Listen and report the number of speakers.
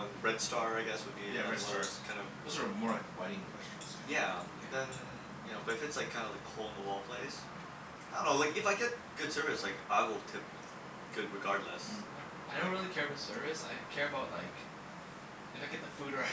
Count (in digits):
3